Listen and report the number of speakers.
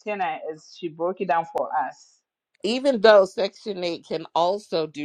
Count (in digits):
2